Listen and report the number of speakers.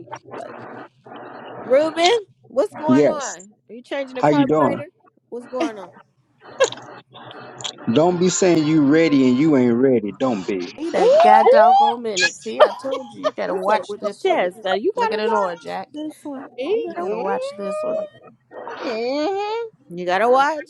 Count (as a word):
four